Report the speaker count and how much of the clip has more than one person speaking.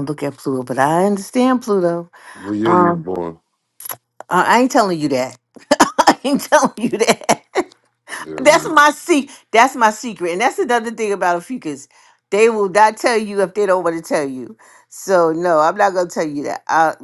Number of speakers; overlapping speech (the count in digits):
2, about 4%